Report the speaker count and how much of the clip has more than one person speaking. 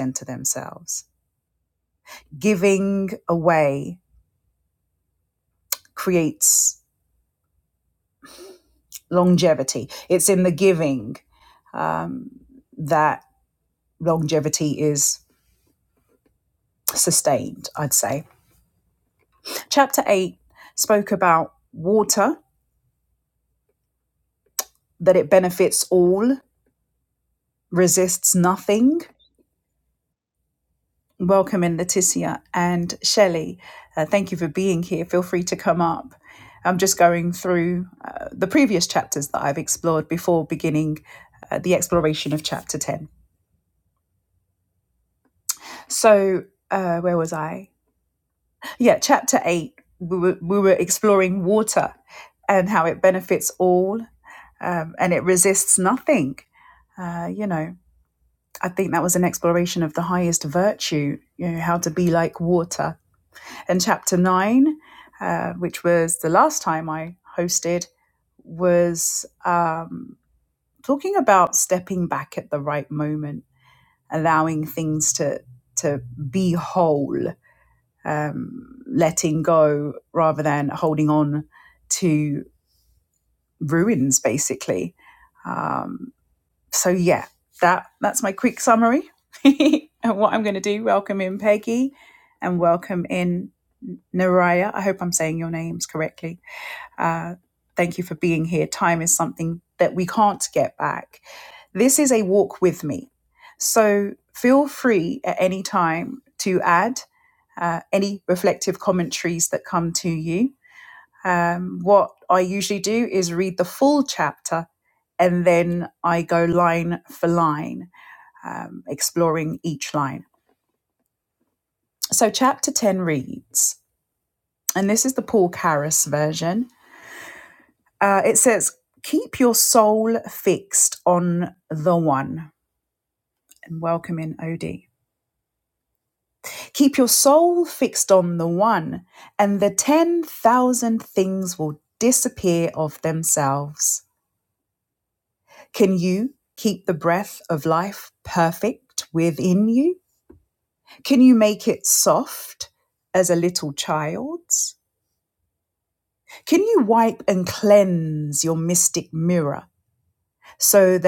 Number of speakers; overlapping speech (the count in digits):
1, no overlap